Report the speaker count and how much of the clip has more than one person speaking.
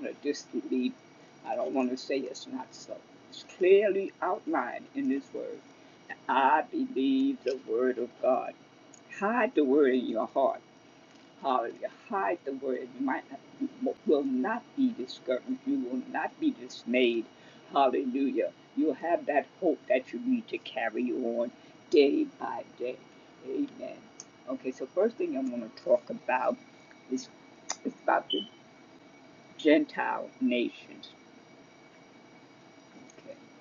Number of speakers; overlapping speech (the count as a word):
one, no overlap